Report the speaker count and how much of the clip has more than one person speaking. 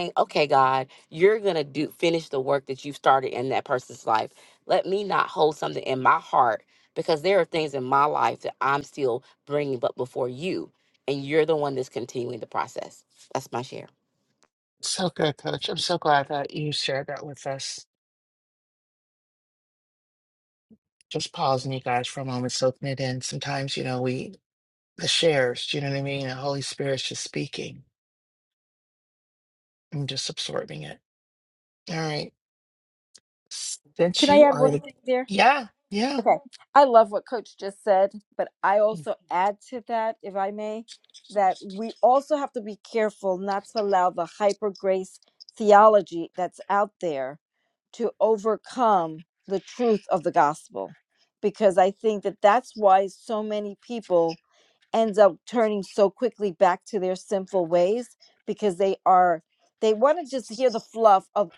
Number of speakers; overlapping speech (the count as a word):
three, about 1%